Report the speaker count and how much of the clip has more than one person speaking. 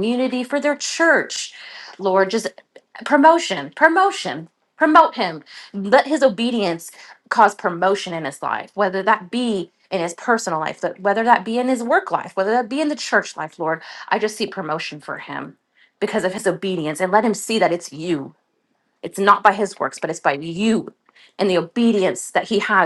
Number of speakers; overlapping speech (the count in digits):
1, no overlap